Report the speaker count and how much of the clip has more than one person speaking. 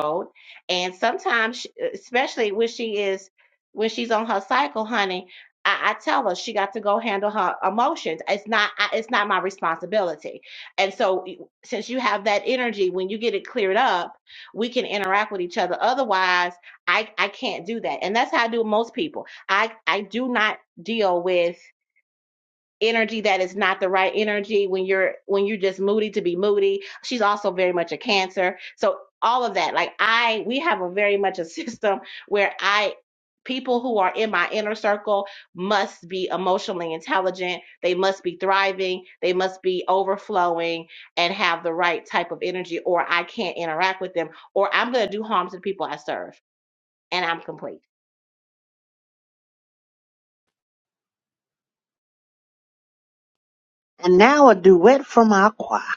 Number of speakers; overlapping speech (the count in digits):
2, no overlap